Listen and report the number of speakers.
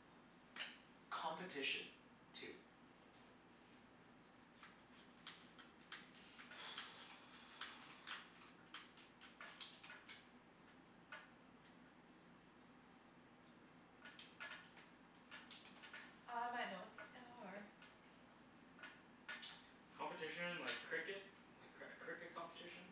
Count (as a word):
three